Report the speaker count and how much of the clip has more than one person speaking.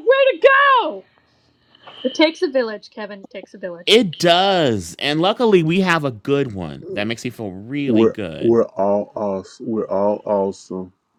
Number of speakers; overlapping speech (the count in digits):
3, about 6%